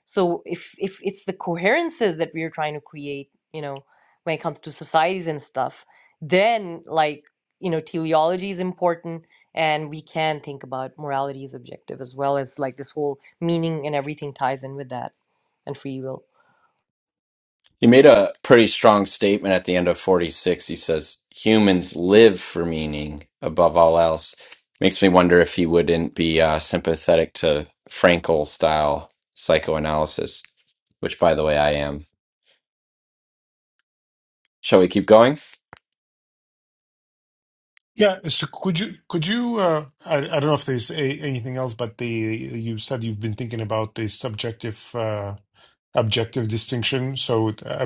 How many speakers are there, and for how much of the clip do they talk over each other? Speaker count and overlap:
3, no overlap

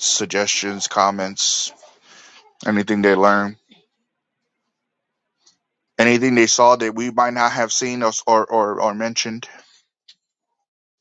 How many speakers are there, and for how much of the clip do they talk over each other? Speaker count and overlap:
1, no overlap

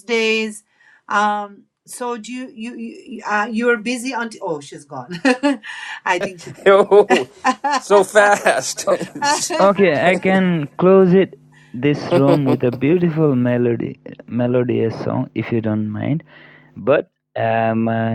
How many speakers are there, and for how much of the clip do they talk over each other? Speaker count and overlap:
3, about 1%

